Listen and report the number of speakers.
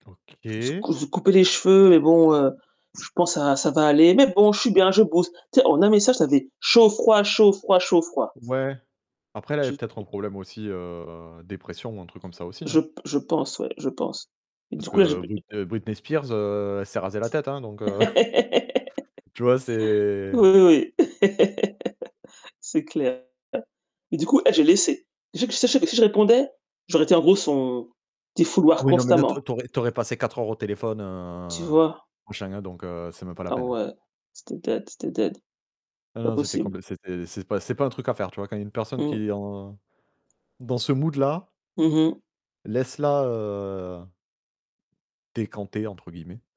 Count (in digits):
2